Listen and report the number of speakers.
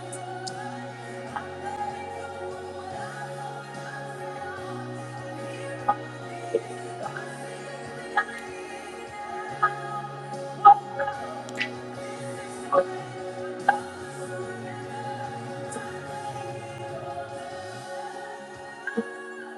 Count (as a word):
zero